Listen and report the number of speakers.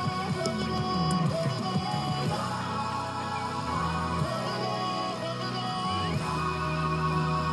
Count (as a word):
zero